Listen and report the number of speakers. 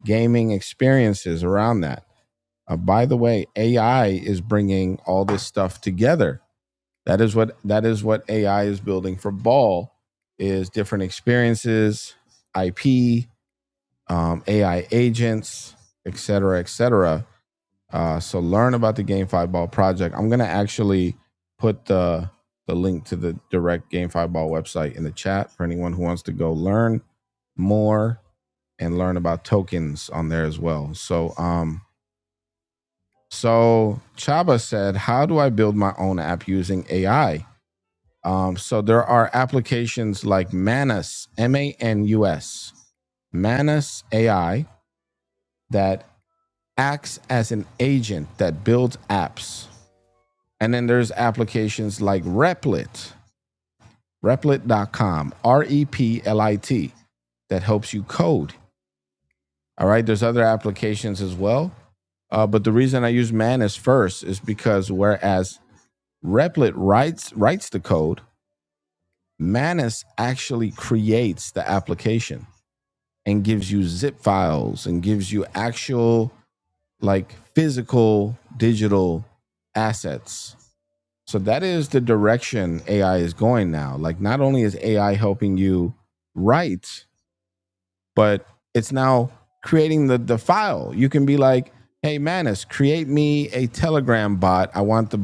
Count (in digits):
1